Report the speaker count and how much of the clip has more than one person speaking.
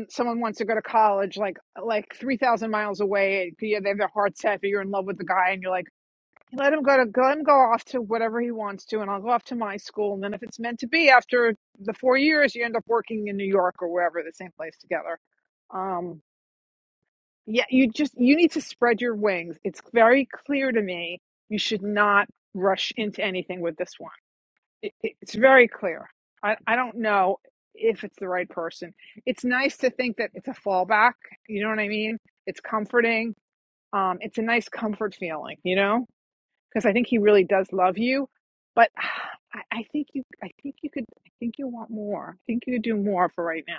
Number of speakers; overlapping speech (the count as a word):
one, no overlap